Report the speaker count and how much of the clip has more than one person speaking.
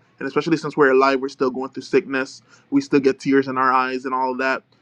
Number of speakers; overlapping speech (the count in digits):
1, no overlap